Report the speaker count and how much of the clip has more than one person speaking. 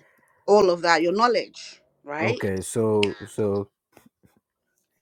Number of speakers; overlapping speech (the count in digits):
2, about 5%